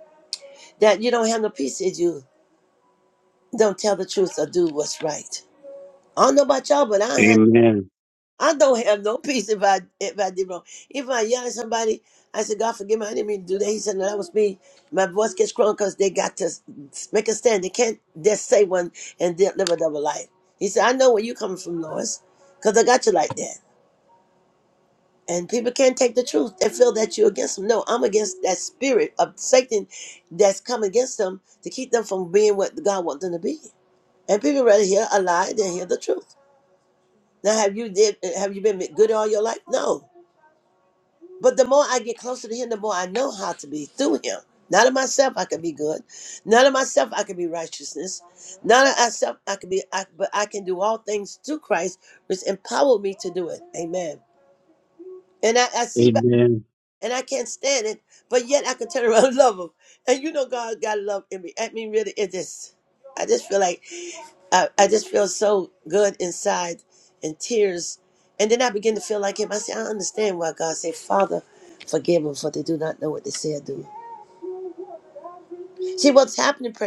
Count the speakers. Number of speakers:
2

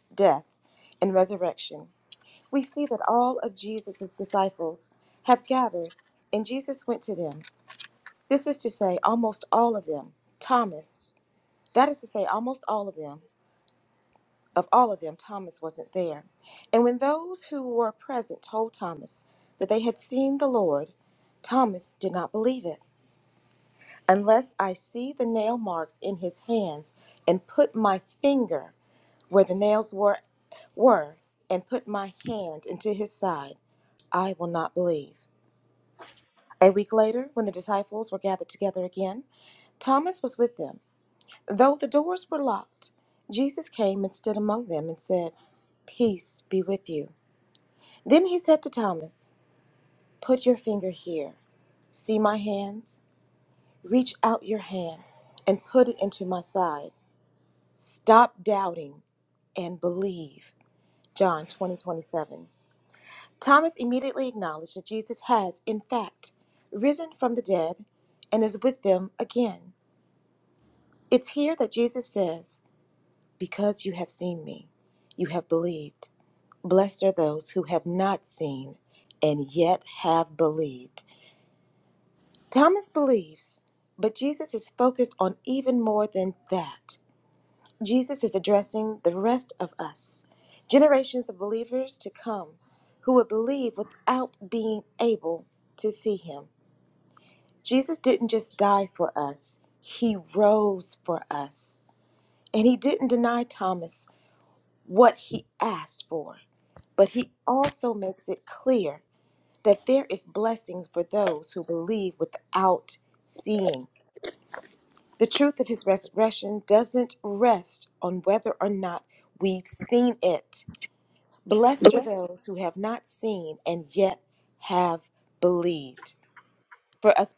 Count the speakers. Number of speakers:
1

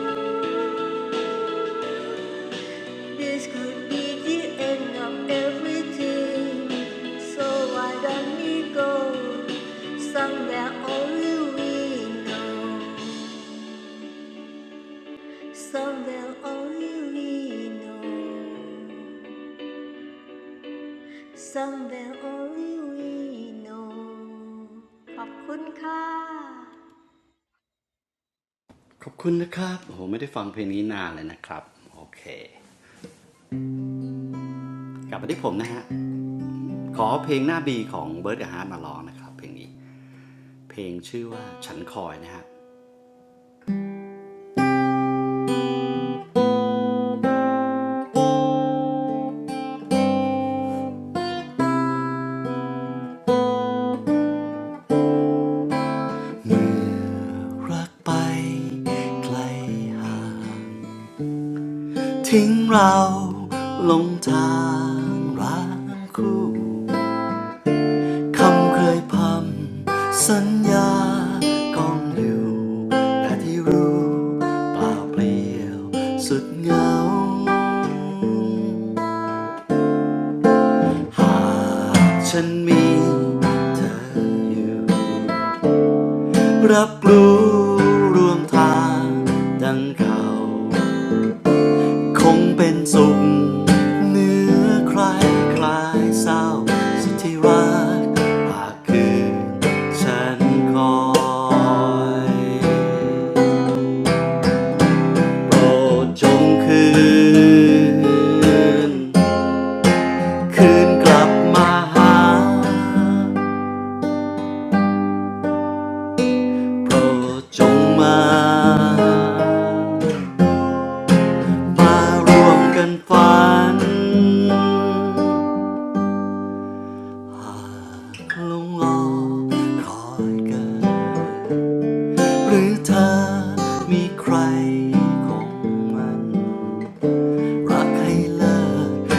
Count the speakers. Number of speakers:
2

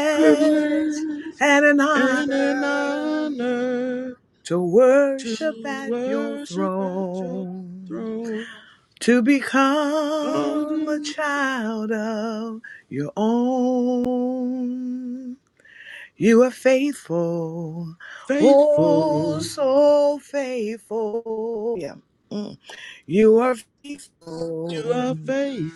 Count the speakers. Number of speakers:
2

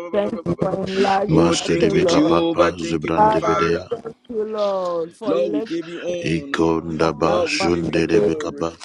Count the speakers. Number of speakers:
3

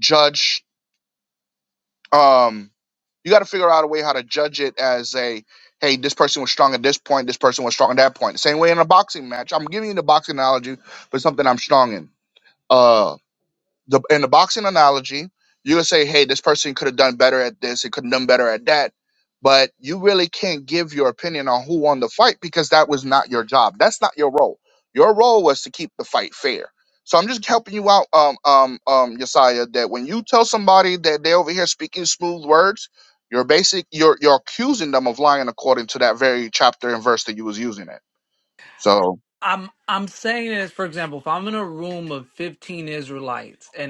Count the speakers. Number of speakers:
2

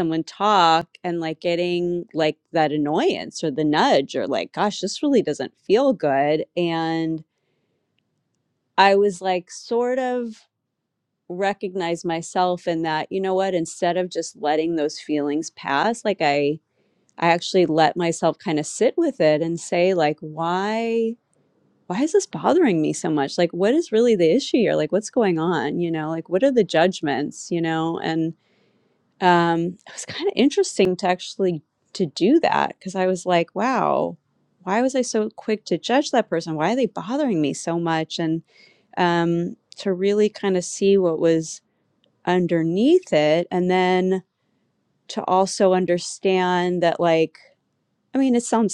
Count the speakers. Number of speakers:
1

